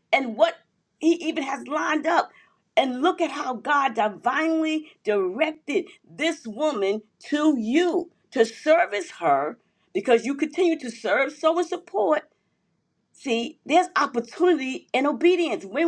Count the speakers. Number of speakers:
1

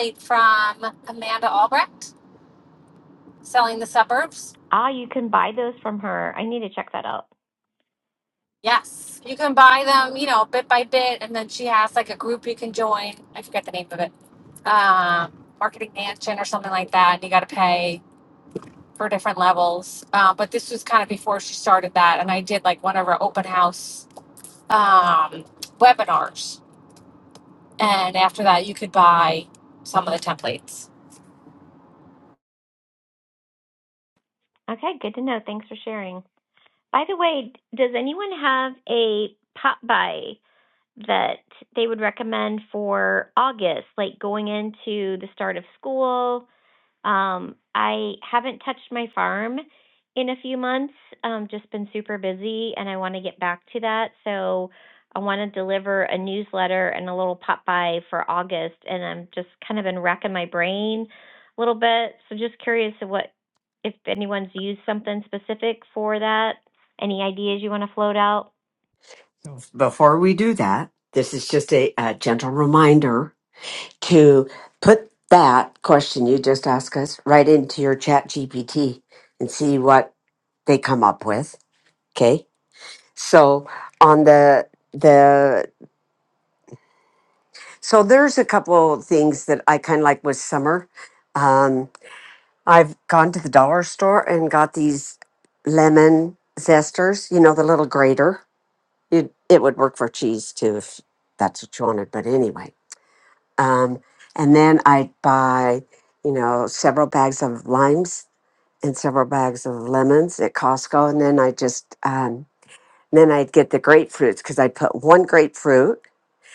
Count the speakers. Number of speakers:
3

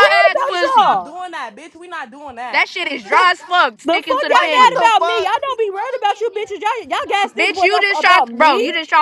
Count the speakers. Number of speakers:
3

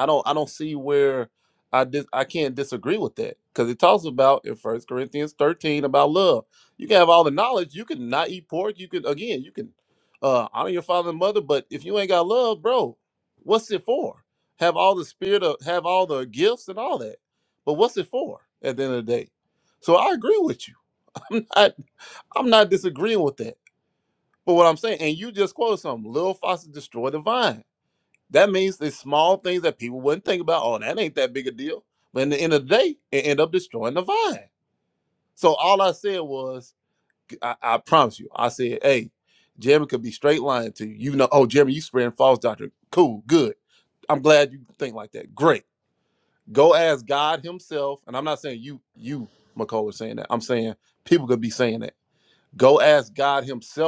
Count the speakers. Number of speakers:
1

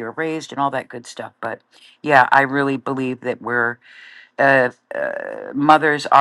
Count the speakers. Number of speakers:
1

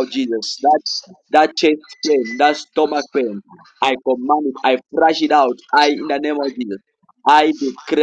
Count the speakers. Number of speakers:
1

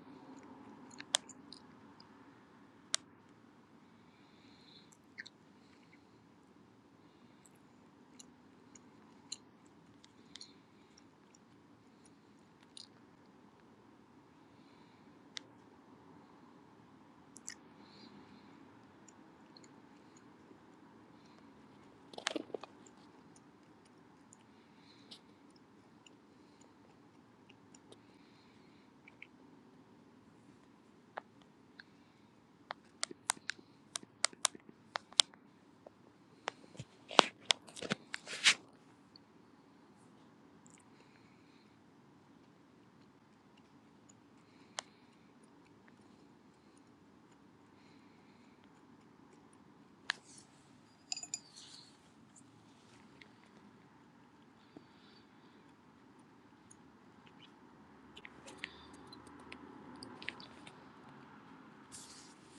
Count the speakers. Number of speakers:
0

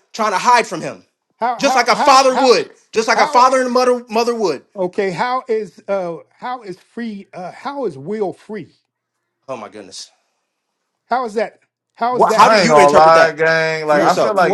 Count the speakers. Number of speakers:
3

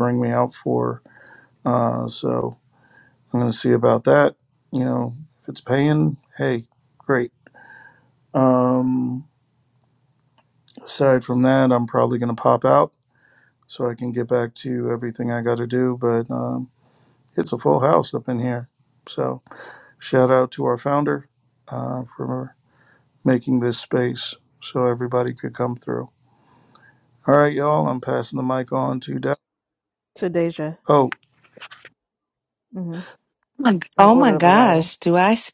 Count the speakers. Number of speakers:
3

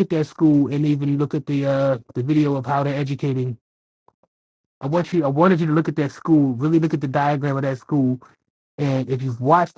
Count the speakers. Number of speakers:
1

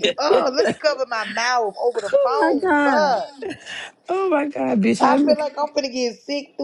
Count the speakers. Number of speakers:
2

